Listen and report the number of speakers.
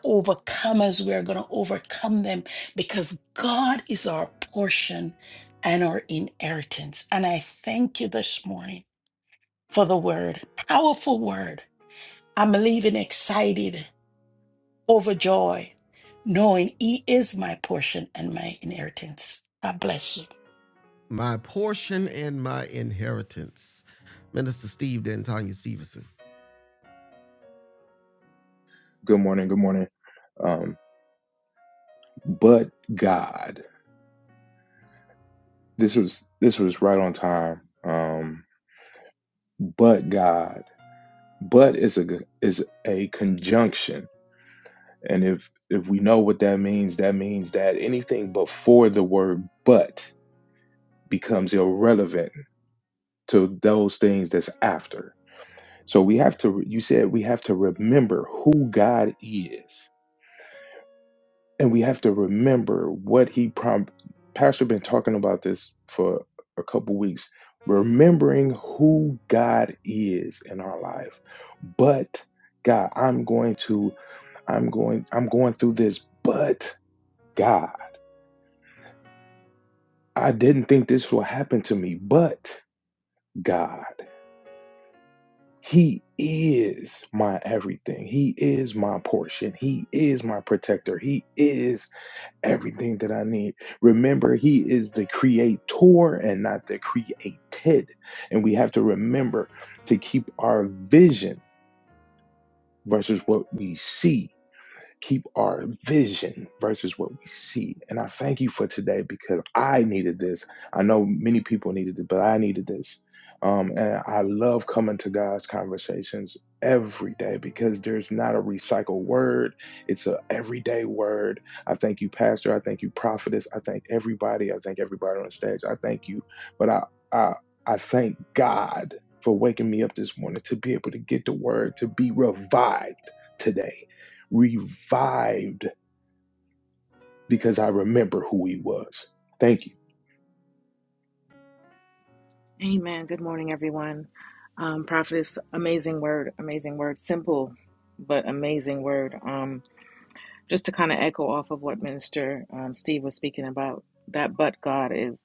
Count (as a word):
four